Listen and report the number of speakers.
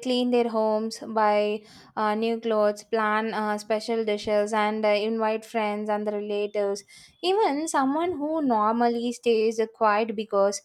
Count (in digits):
1